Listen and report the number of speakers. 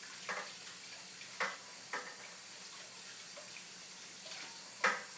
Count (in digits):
0